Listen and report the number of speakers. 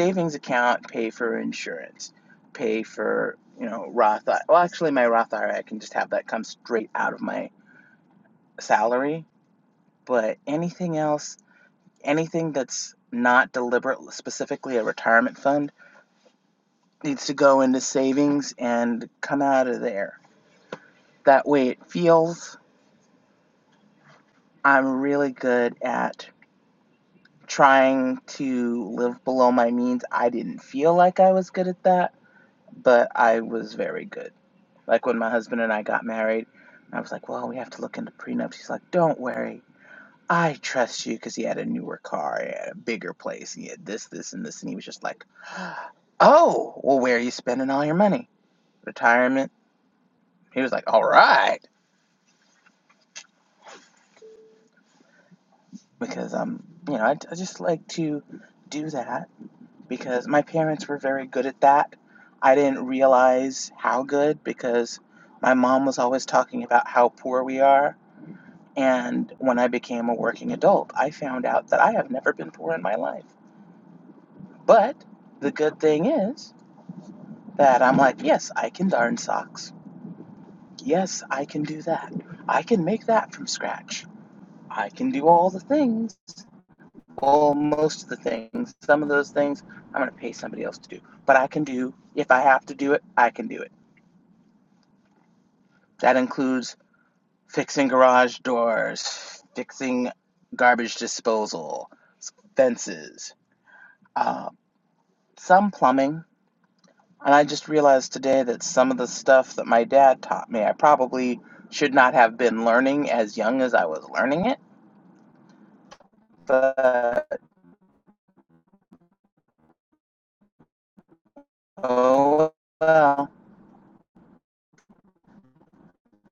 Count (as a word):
one